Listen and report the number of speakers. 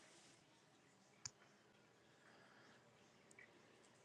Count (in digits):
0